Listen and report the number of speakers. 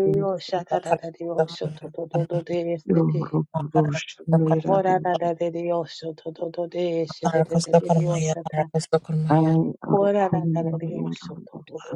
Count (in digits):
3